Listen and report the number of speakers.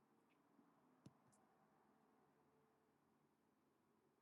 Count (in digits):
0